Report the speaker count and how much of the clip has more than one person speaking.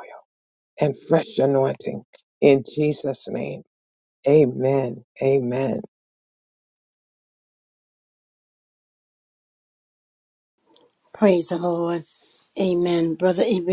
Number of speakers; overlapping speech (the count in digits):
2, no overlap